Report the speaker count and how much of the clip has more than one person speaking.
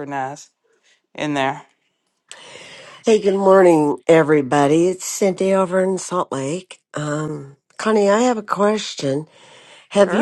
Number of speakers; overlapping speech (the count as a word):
two, about 2%